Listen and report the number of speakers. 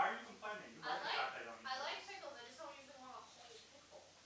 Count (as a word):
two